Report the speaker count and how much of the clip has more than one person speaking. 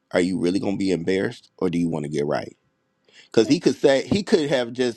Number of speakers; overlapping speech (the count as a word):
one, no overlap